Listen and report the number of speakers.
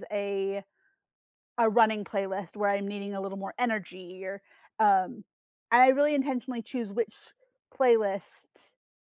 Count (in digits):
1